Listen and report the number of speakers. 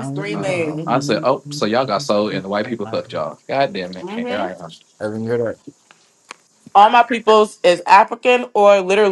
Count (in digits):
3